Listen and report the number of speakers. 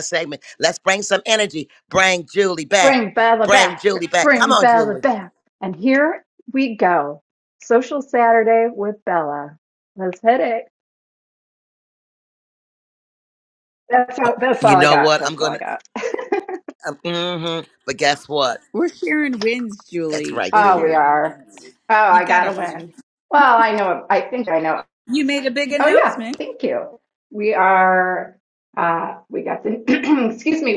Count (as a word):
three